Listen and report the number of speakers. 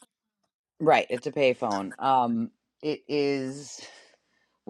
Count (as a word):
one